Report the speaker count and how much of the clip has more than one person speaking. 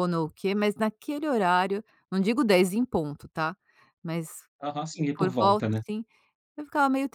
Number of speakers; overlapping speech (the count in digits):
2, about 9%